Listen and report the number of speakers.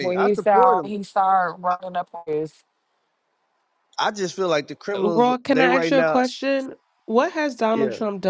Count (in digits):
3